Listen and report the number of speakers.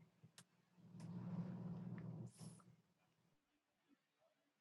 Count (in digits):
0